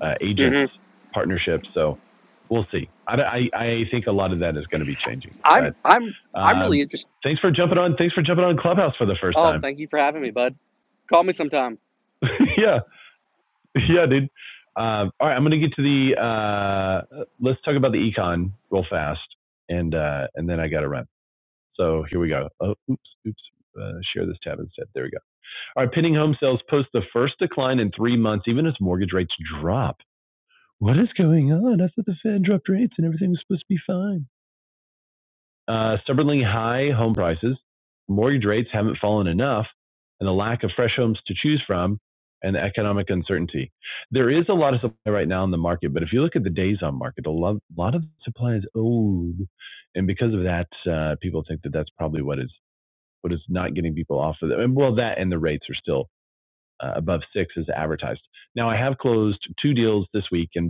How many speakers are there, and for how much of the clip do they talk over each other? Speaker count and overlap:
2, about 2%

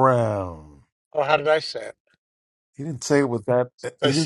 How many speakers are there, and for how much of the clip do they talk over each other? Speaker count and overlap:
2, about 6%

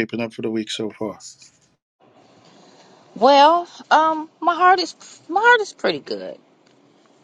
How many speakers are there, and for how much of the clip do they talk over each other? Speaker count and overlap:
2, no overlap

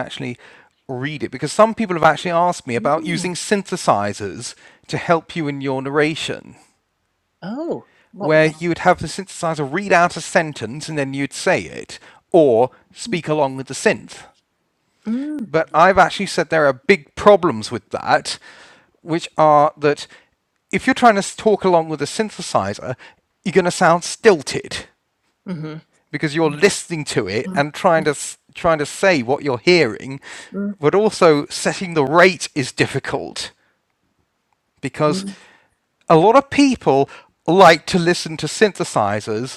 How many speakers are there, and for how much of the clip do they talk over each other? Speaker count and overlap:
2, about 3%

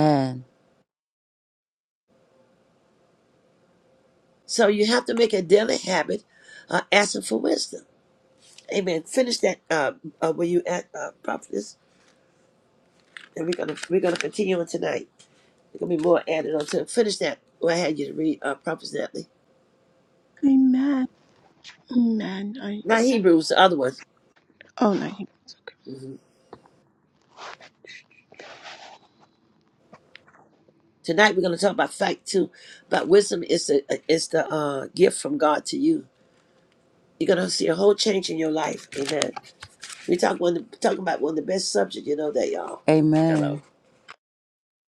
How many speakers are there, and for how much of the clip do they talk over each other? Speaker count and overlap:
3, about 1%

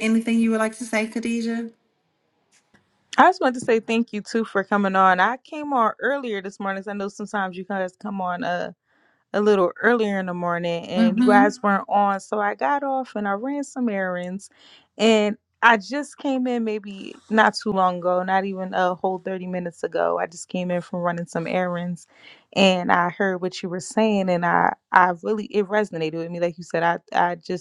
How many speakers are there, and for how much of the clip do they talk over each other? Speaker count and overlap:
2, about 2%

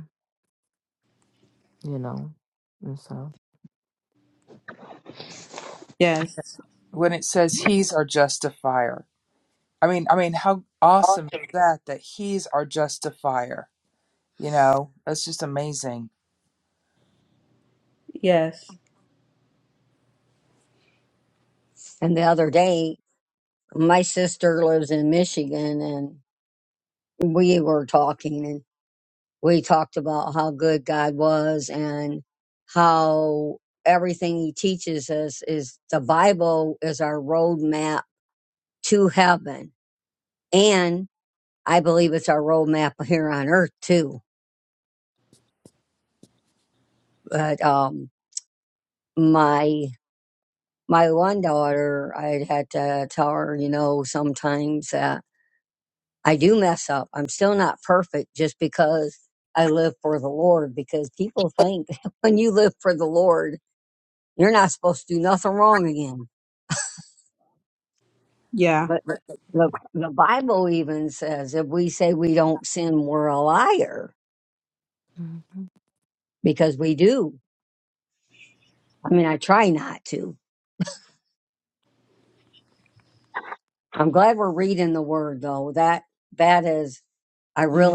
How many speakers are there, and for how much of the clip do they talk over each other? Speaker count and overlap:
4, under 1%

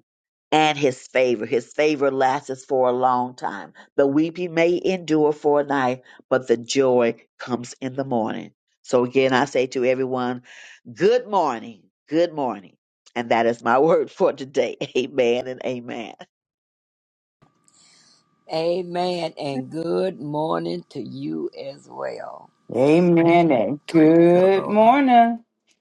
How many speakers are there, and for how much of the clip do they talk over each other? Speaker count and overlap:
3, about 4%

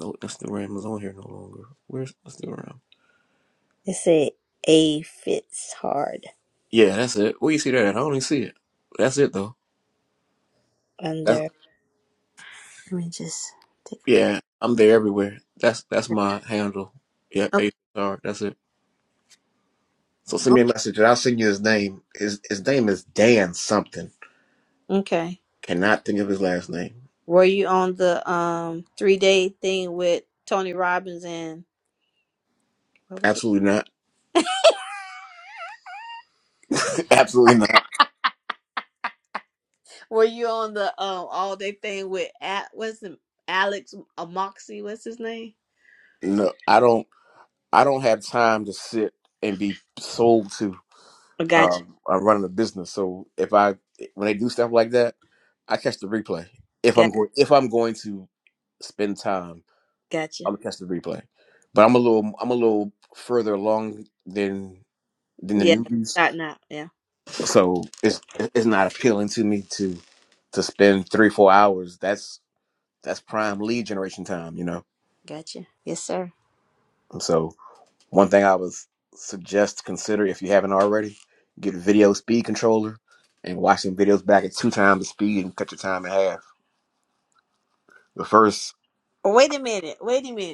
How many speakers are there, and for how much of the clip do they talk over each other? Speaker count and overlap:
2, about 2%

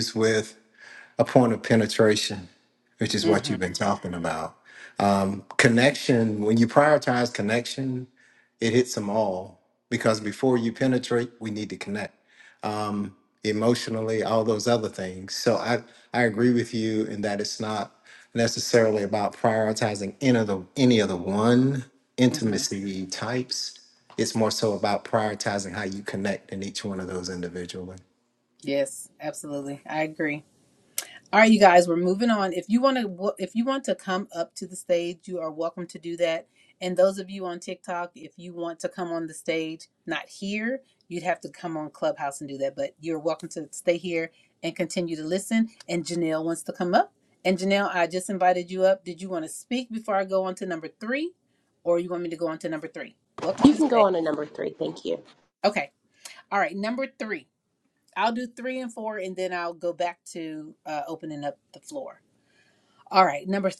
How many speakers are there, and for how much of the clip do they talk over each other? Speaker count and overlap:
3, about 2%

